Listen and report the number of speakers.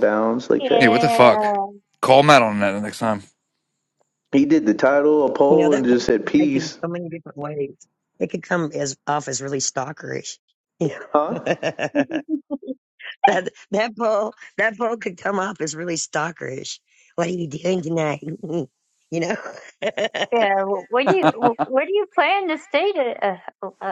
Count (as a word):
four